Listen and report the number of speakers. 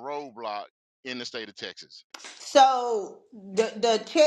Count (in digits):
2